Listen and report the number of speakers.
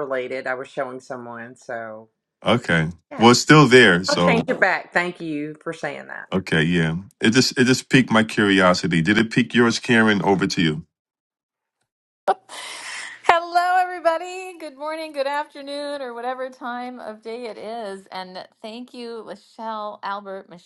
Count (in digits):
3